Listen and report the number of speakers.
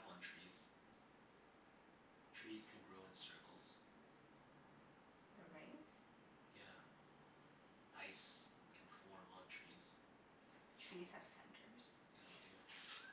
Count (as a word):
two